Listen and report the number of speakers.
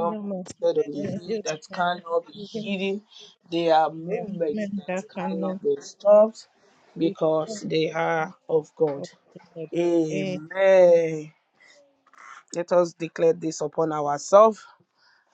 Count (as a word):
two